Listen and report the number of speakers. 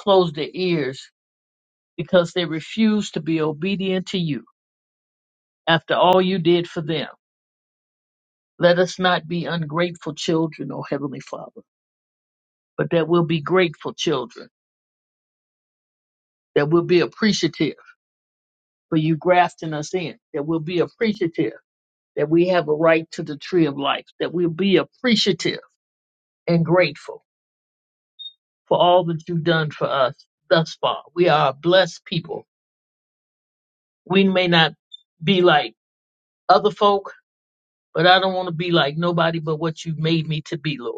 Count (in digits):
1